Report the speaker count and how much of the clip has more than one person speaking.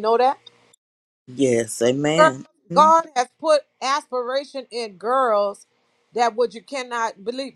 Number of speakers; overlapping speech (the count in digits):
2, about 4%